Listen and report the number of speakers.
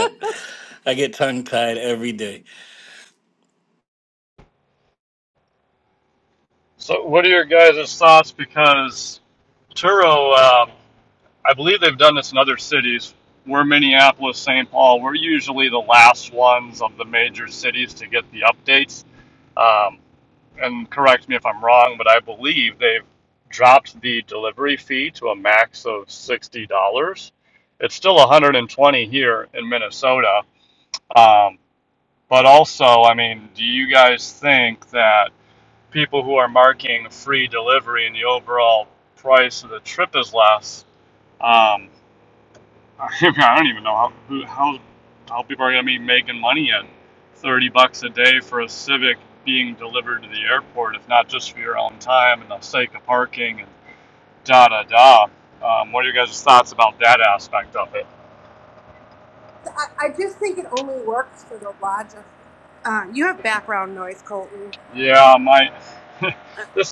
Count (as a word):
three